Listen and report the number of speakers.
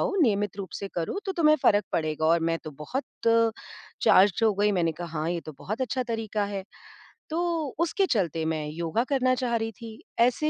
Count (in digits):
1